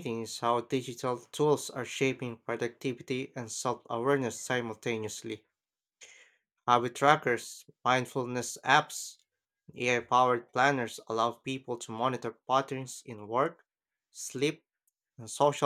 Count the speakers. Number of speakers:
1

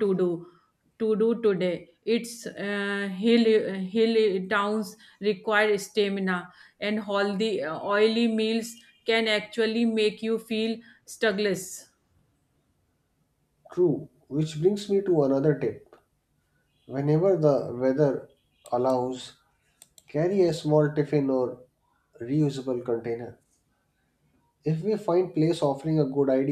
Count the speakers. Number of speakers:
2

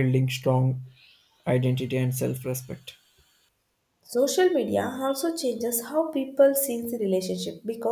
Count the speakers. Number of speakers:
2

